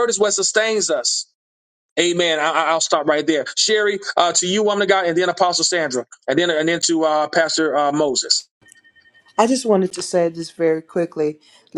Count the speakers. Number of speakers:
2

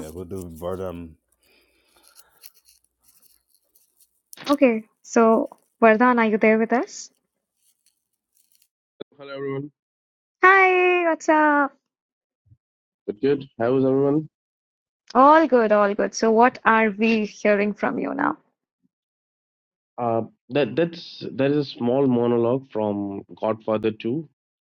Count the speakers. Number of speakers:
3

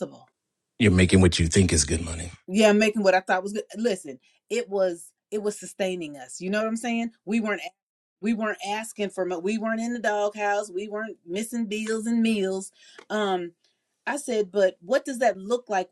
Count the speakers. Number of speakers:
2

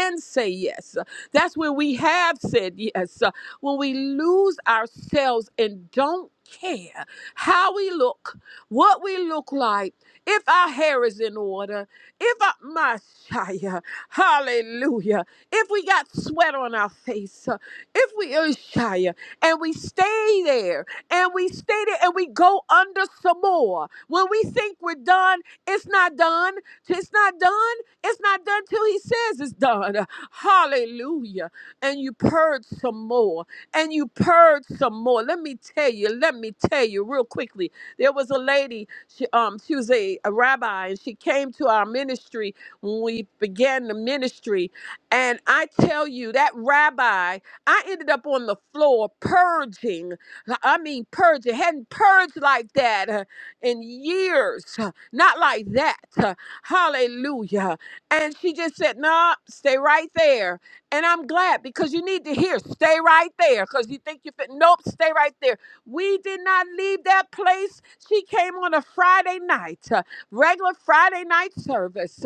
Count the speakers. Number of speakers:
1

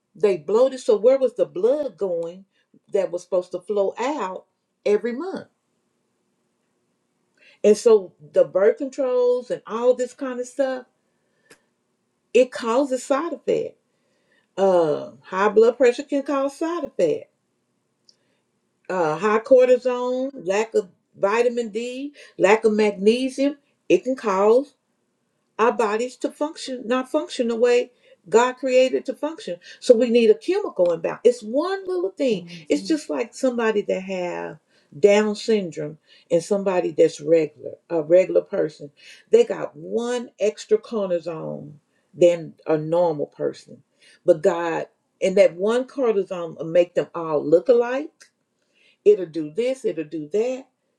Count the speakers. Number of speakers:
1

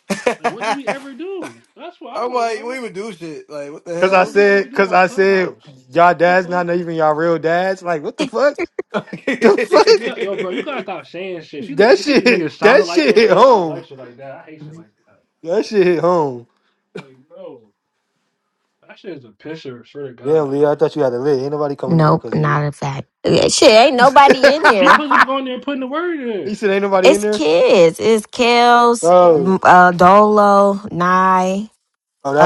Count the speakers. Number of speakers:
4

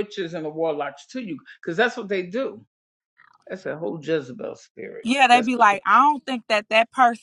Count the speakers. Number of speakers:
2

